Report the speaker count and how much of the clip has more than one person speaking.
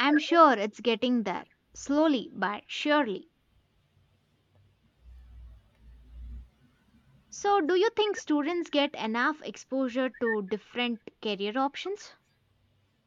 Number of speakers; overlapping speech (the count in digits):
1, no overlap